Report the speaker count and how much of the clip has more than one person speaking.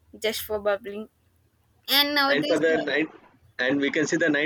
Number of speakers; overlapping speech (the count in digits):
2, about 13%